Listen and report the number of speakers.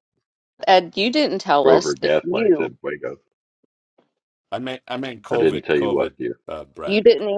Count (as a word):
three